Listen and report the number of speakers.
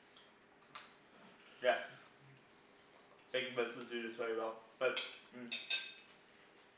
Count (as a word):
one